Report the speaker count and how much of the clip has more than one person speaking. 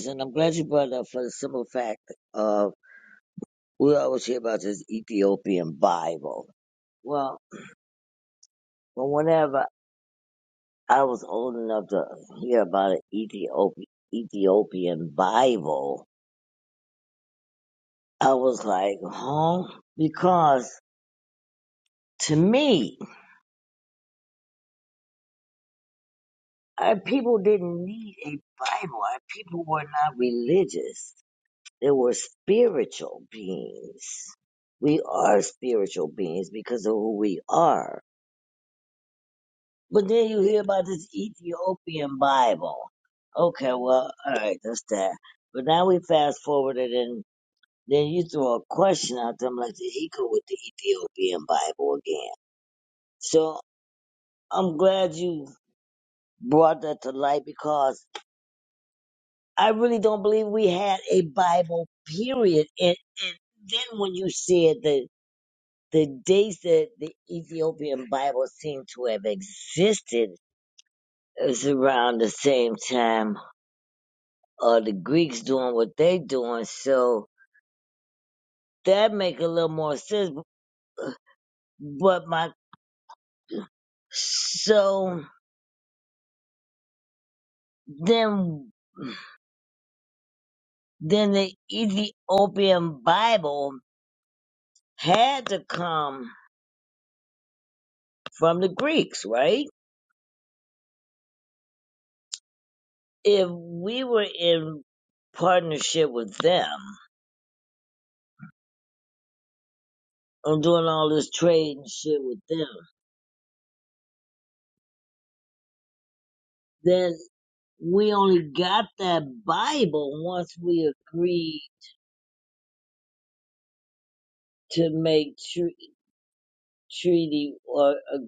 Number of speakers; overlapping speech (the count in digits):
1, no overlap